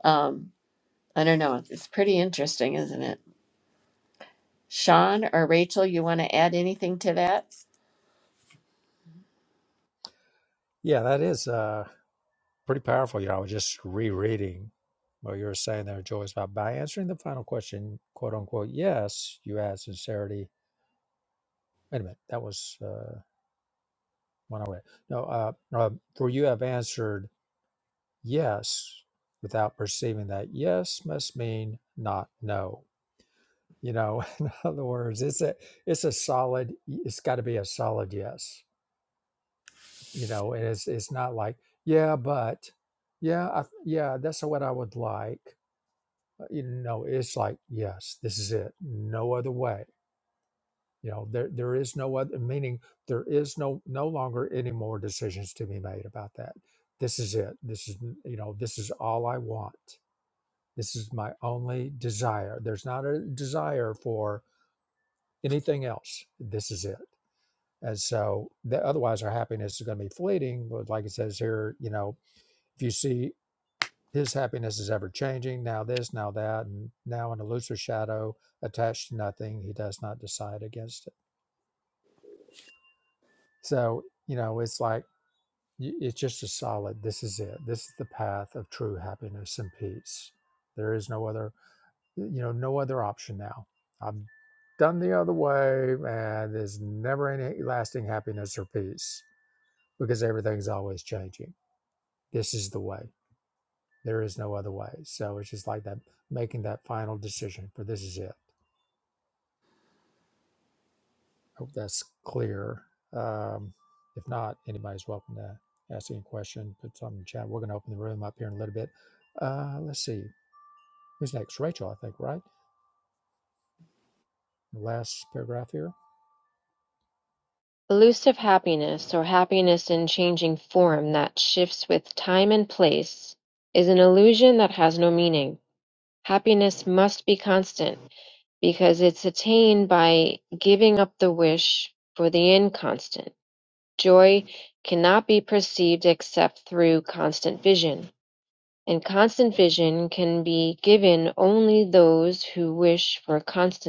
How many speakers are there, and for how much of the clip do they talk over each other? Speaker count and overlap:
three, no overlap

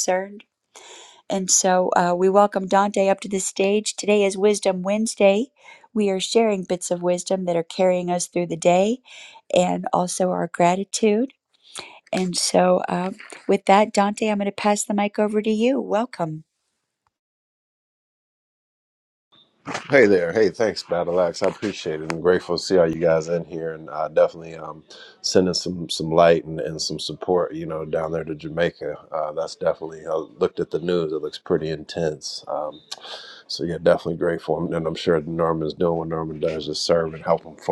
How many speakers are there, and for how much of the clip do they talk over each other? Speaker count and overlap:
two, no overlap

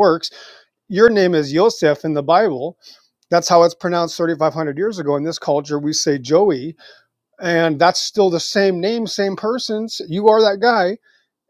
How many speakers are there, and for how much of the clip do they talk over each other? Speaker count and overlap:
one, no overlap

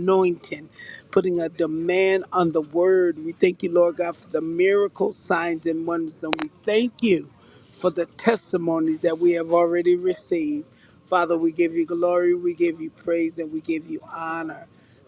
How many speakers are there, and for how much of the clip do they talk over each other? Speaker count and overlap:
one, no overlap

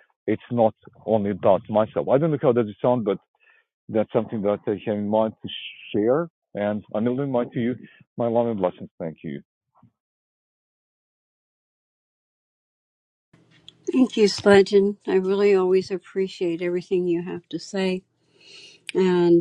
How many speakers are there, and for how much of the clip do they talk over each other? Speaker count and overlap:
two, no overlap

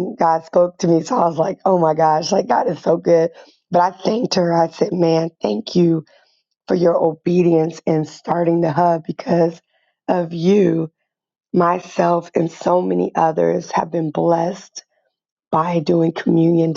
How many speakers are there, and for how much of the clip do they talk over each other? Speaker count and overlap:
one, no overlap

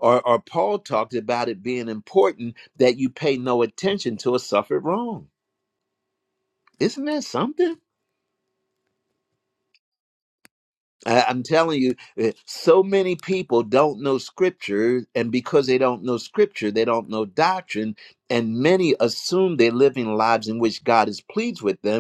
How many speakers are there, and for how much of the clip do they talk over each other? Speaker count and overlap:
one, no overlap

